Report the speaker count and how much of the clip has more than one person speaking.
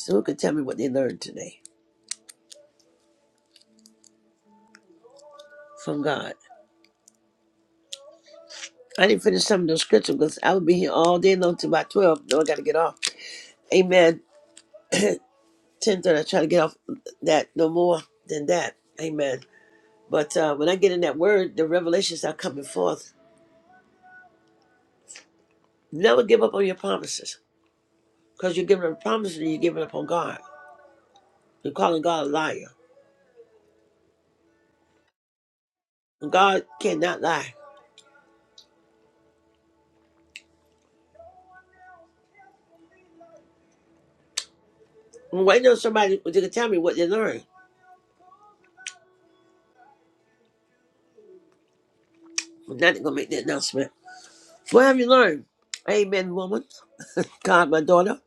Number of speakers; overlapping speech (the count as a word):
one, no overlap